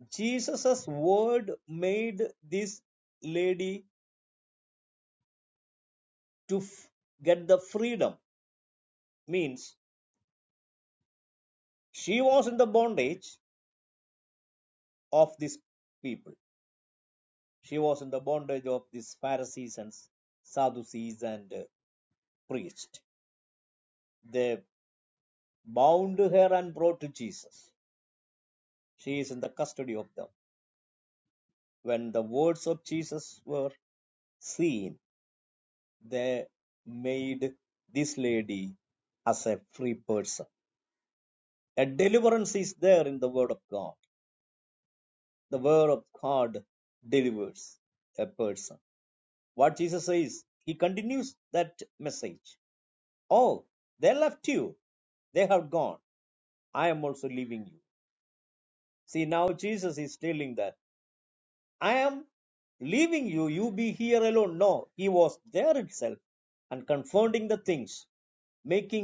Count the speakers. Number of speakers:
one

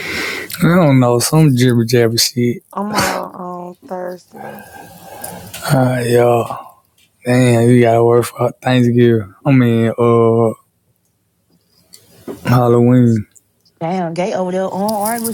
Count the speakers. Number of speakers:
three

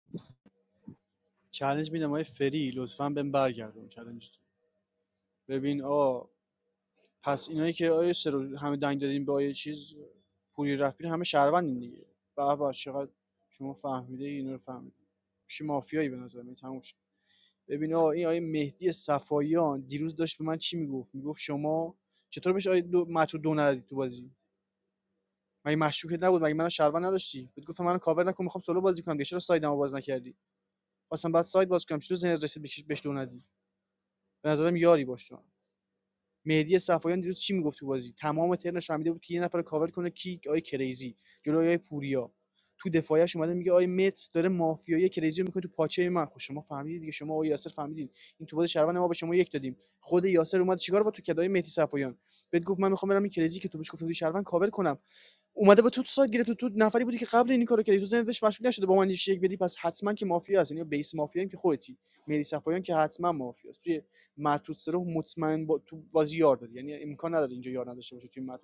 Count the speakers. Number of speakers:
one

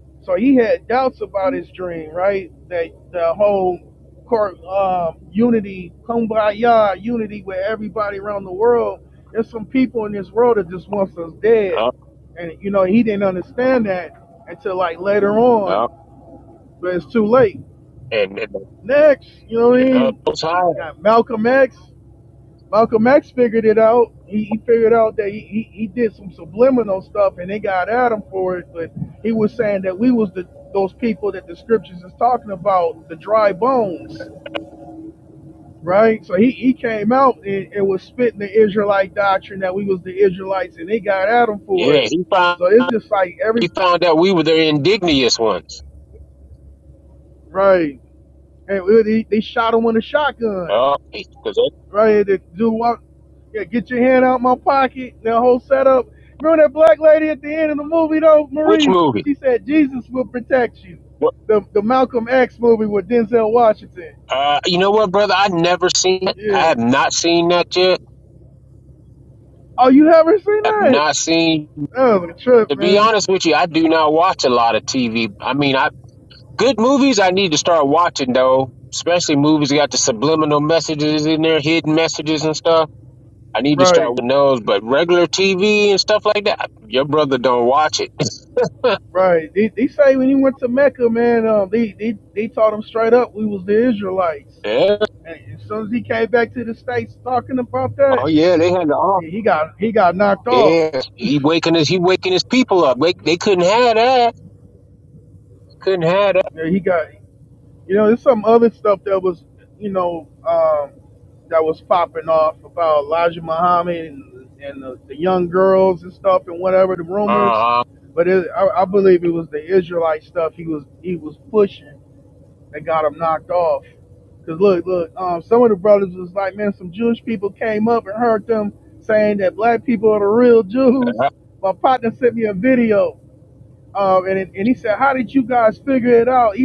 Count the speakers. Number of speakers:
two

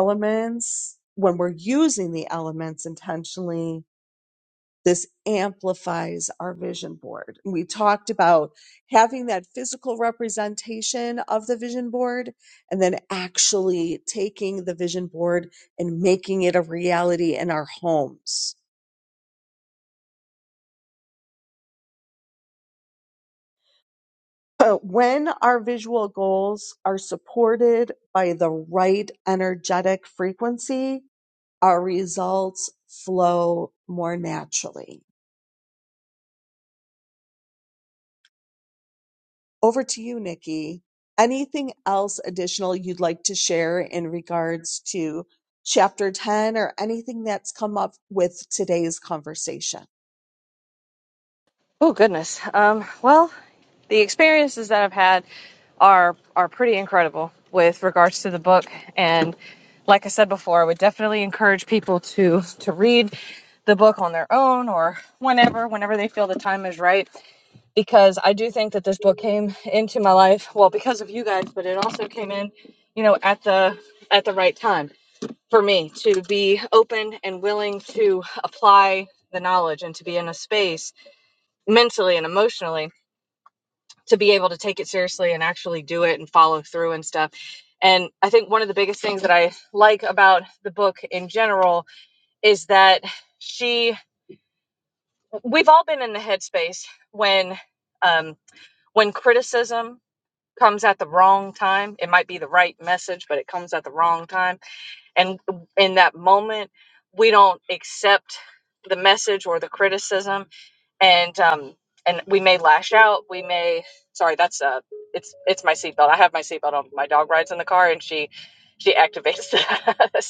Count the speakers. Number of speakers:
two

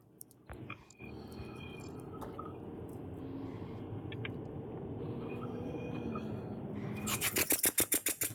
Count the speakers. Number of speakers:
zero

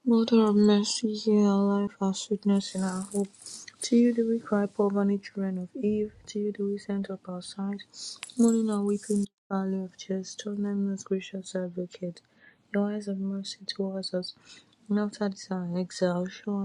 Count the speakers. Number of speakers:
one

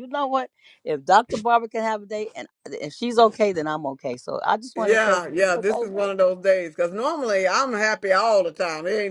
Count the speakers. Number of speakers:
two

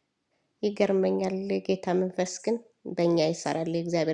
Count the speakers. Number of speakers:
one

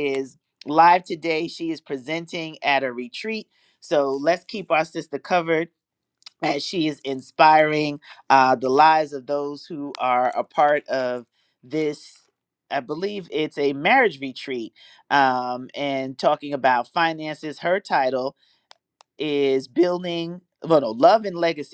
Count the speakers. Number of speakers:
one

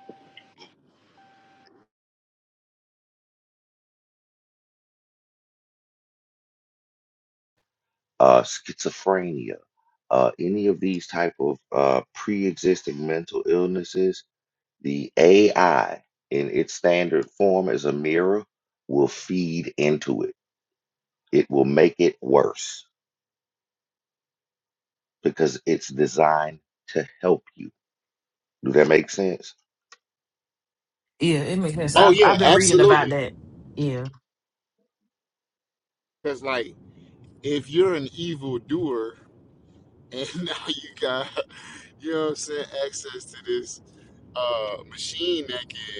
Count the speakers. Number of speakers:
three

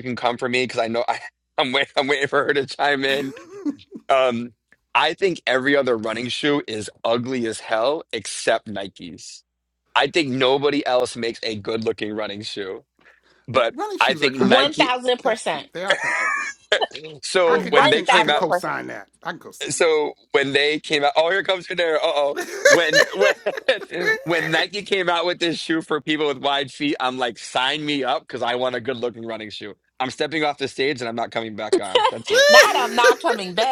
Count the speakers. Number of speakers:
three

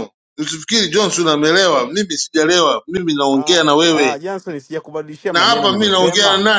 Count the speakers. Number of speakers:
two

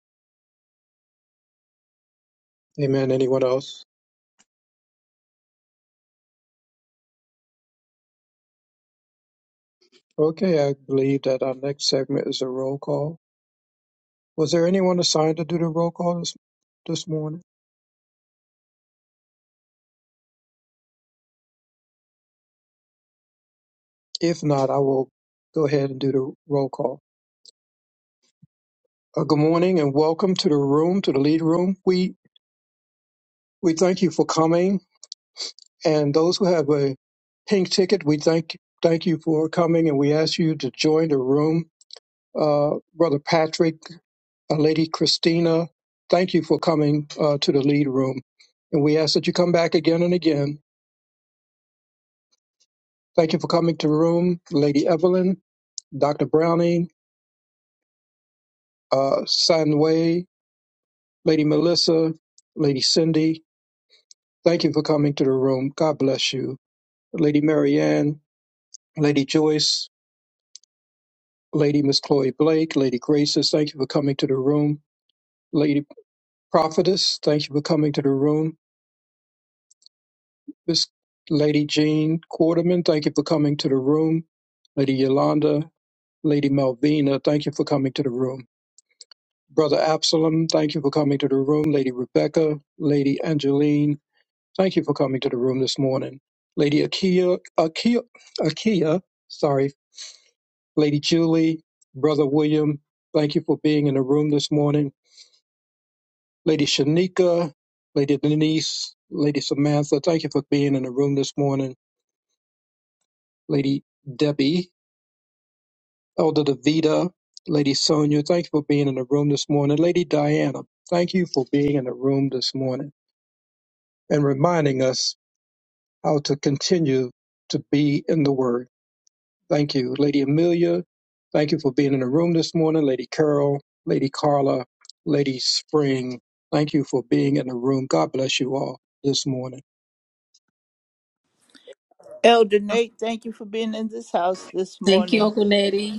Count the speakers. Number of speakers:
three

